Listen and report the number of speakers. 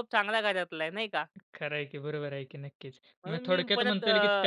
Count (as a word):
two